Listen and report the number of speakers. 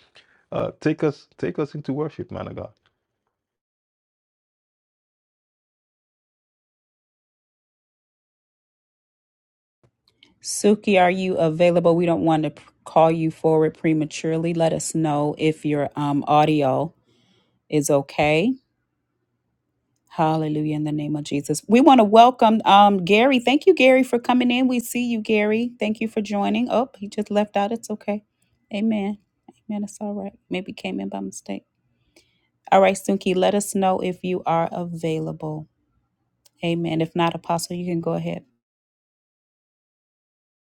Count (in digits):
2